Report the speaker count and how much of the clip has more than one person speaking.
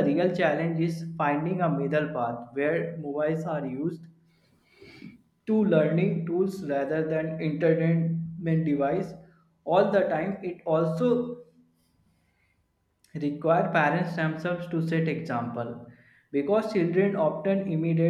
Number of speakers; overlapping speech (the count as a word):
one, no overlap